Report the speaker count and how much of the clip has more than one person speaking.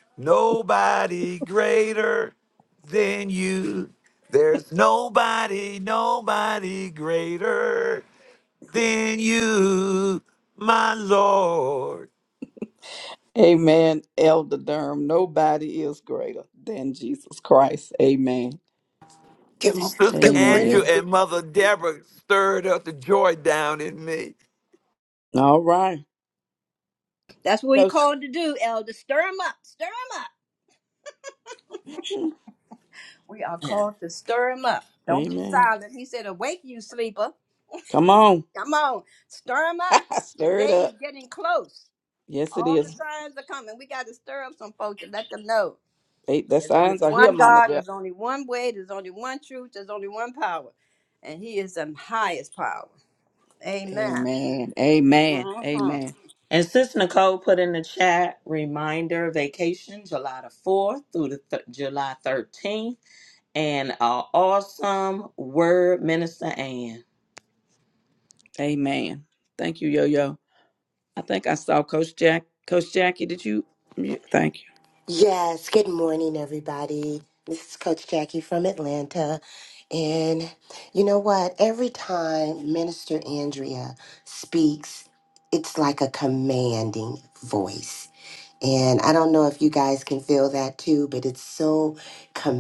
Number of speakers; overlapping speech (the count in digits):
5, about 5%